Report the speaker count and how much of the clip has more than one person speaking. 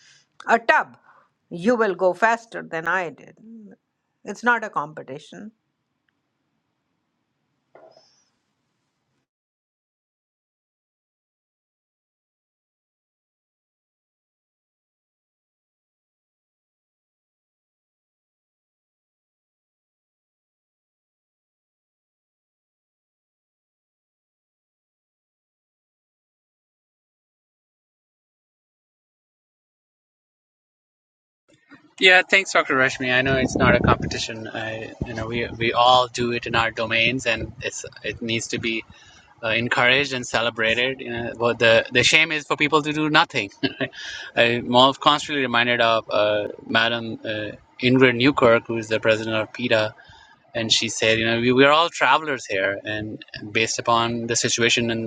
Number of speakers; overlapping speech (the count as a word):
two, no overlap